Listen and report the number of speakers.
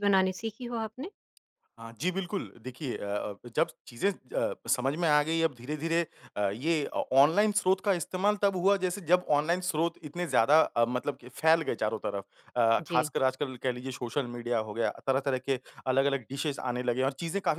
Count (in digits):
2